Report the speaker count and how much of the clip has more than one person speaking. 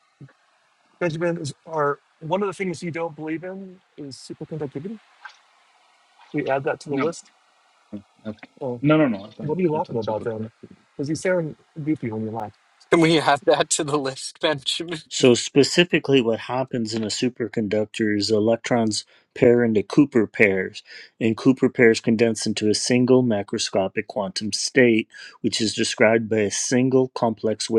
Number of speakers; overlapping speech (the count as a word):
four, about 4%